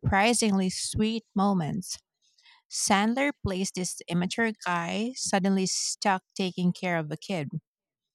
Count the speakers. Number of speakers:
1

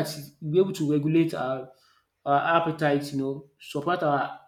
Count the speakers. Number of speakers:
1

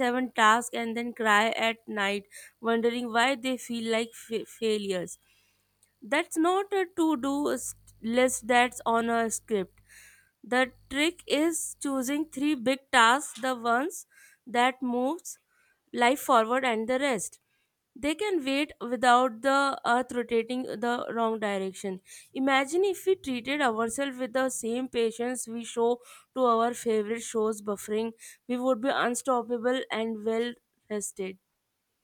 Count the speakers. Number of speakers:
1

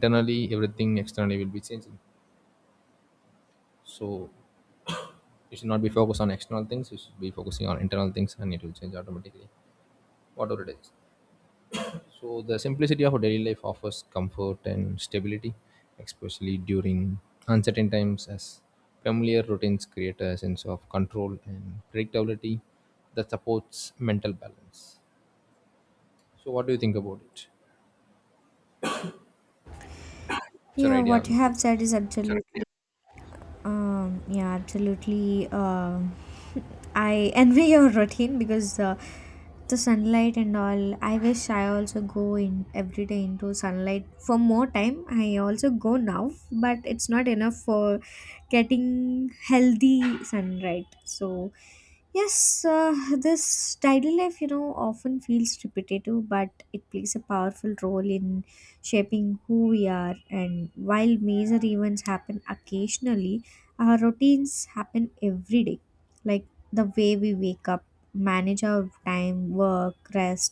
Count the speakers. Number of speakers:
2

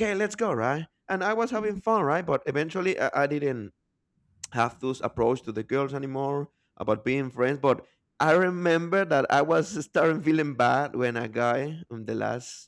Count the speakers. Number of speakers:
1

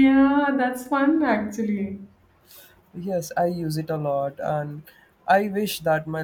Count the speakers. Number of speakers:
2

